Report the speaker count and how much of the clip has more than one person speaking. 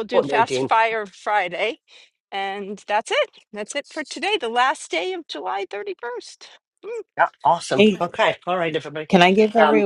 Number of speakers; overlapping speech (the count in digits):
3, about 11%